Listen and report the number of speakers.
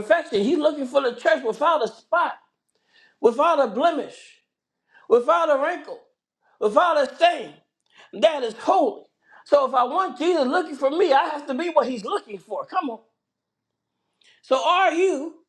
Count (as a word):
one